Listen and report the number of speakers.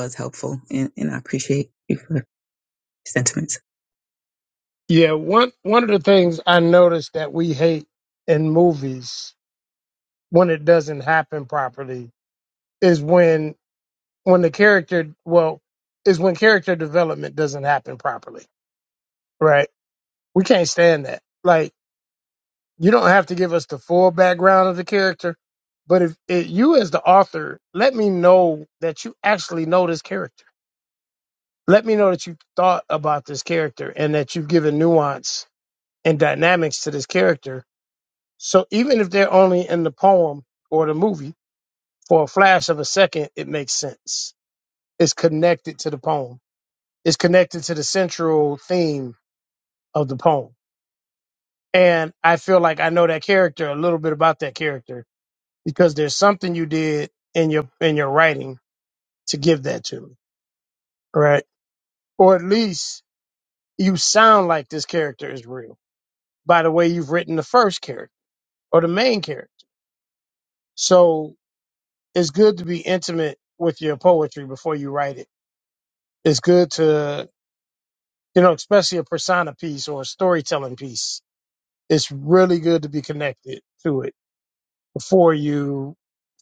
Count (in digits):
2